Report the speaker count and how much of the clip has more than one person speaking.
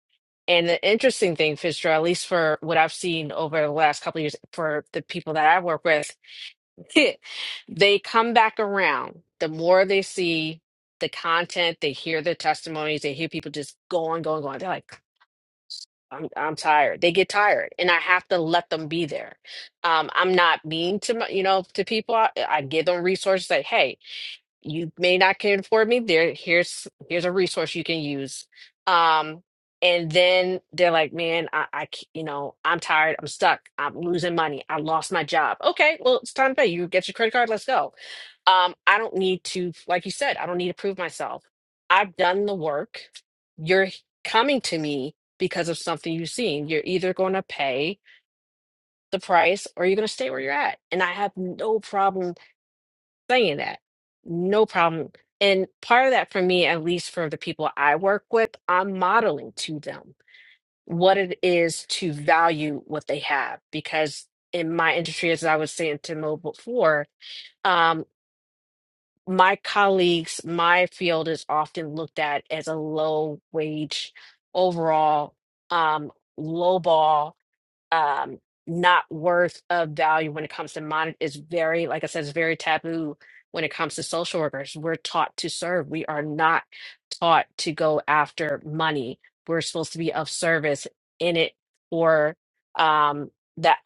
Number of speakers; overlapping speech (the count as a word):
one, no overlap